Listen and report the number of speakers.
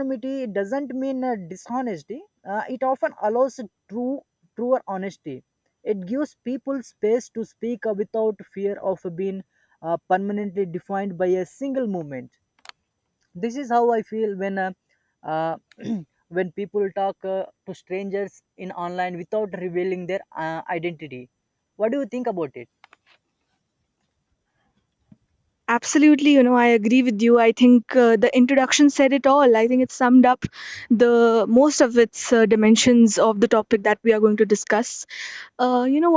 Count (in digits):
2